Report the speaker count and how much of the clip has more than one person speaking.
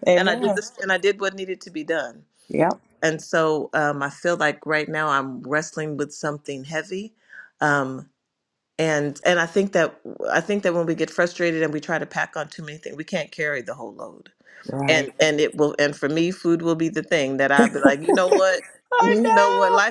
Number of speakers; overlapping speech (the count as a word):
two, about 8%